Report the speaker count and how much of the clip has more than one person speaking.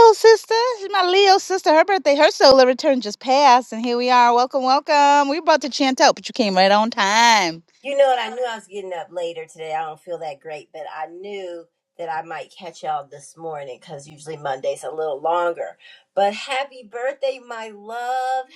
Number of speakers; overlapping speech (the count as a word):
two, no overlap